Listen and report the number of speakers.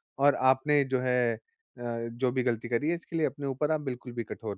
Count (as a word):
one